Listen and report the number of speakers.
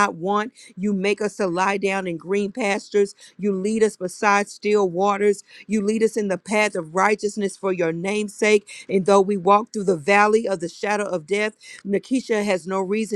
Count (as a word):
one